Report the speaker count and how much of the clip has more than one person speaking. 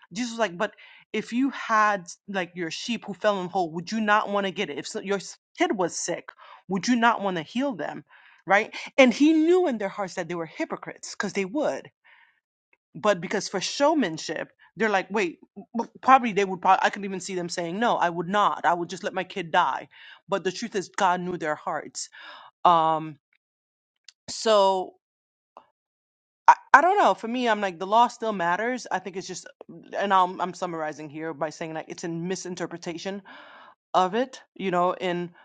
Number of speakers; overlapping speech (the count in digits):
1, no overlap